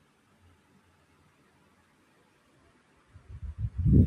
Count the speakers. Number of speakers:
zero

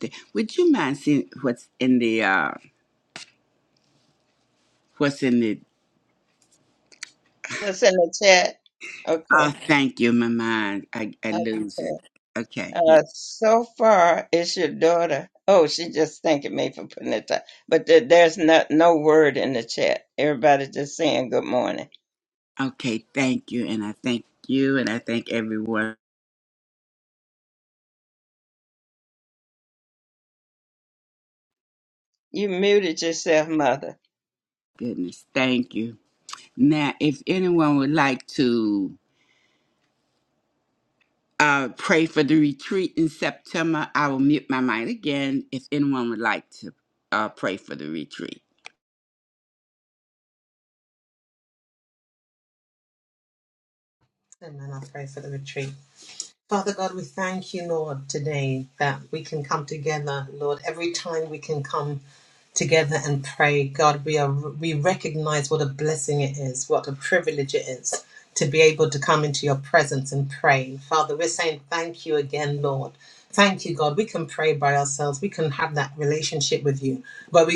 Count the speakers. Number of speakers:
three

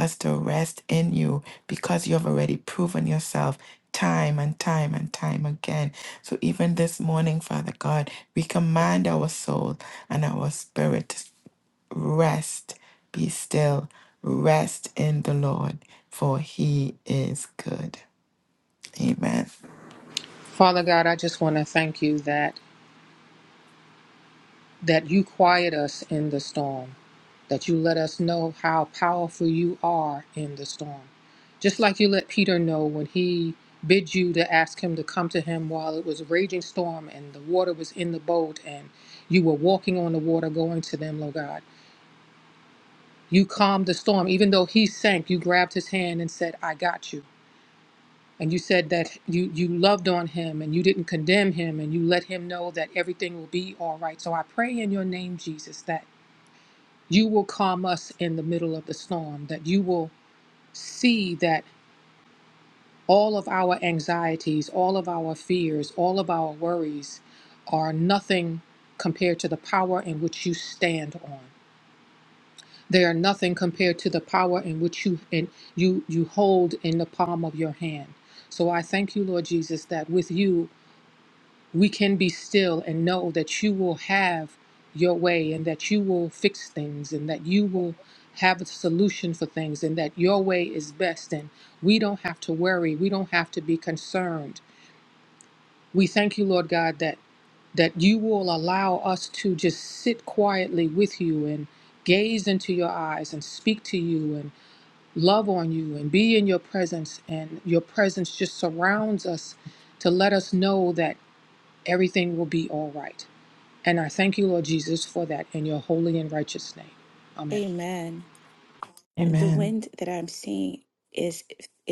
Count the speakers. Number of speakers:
three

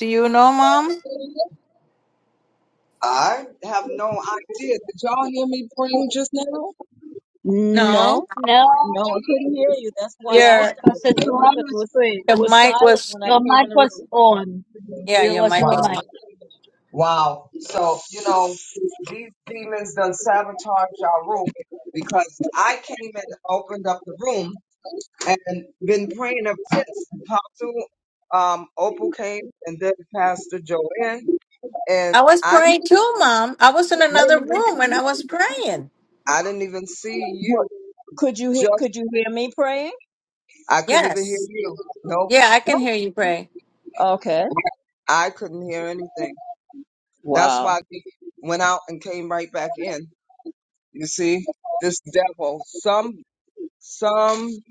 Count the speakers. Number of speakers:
four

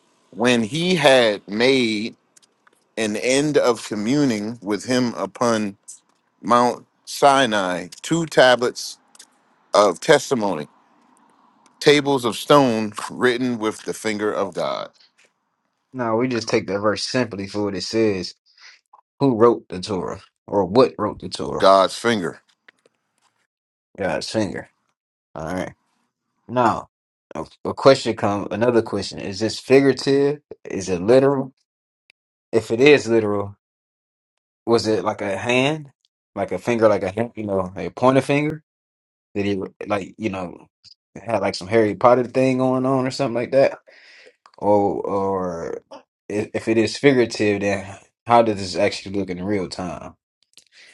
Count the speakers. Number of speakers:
two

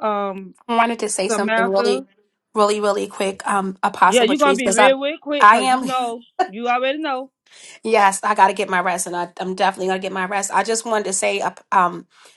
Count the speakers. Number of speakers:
two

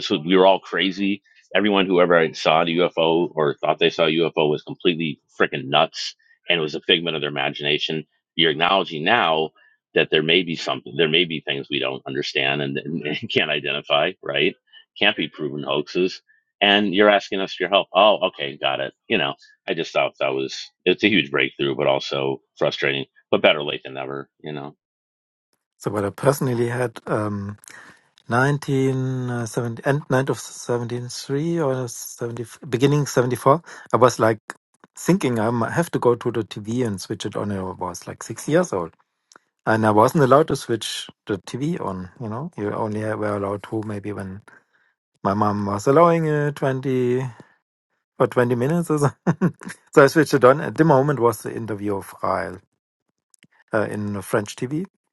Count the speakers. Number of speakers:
two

